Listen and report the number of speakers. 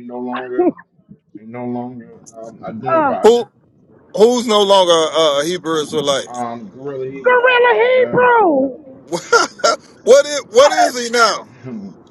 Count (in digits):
3